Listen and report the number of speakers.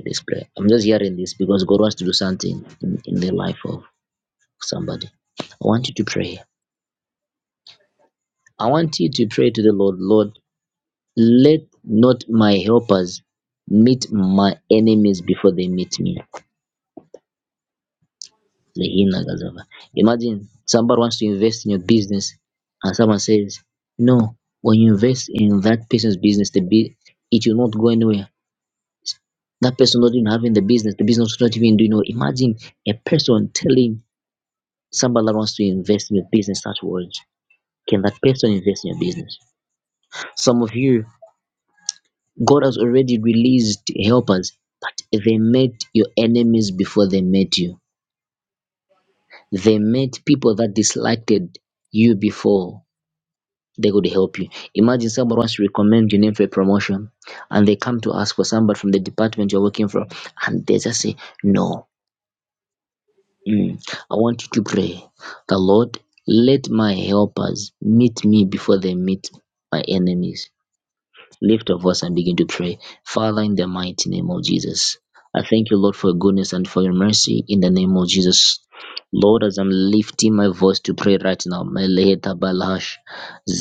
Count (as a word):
one